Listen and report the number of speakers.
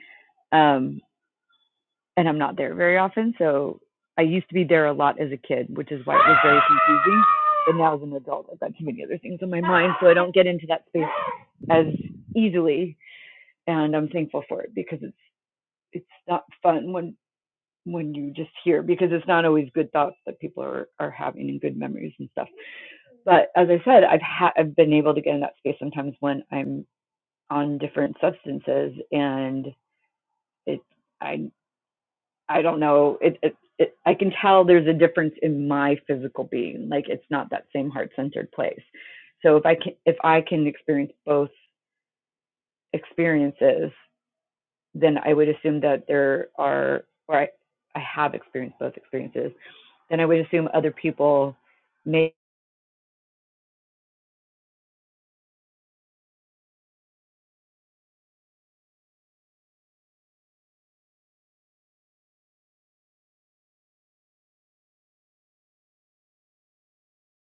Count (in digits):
1